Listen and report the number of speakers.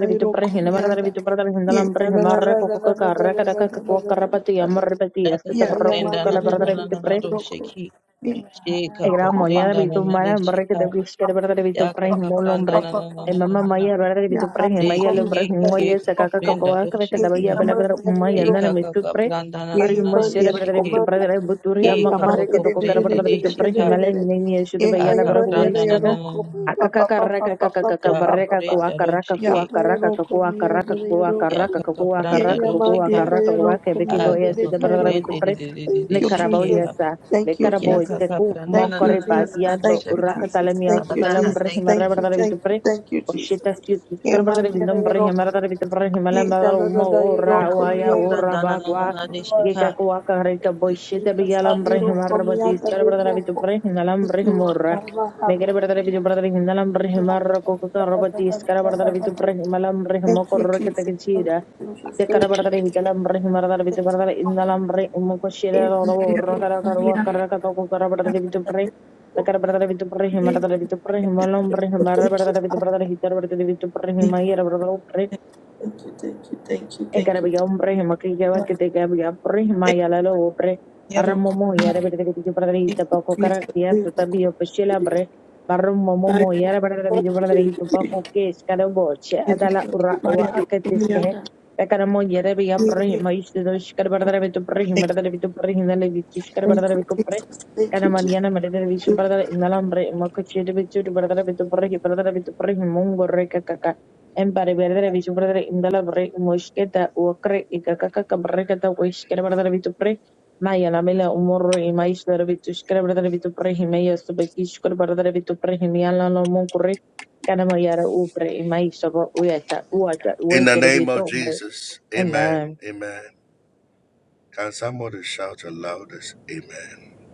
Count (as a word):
four